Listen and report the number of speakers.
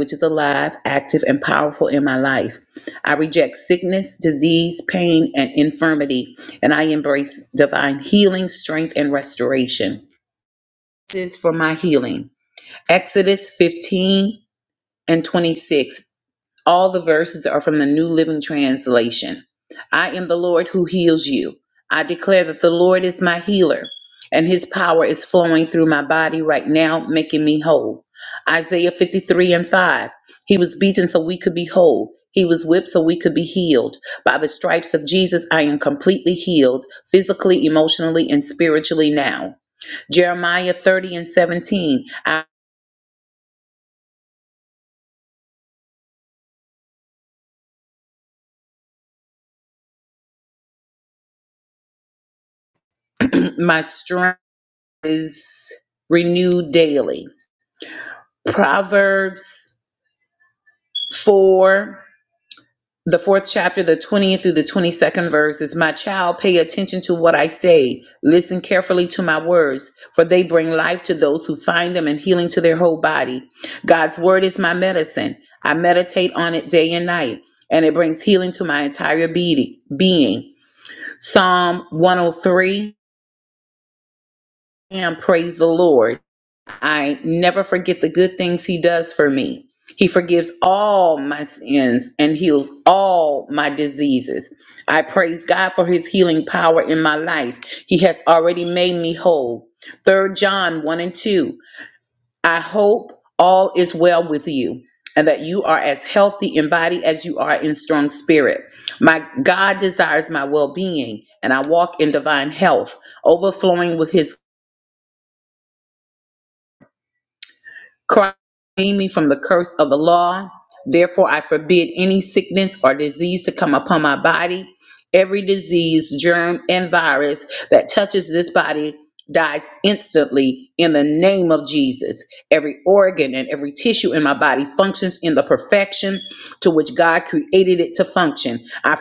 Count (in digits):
1